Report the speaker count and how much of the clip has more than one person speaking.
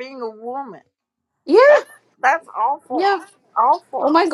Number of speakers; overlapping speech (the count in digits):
2, about 12%